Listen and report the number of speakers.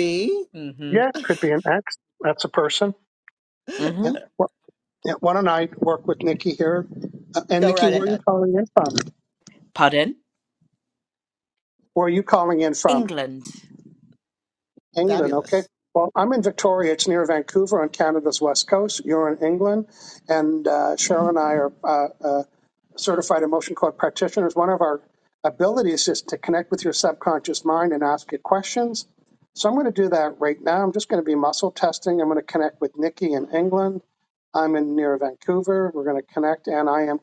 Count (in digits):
3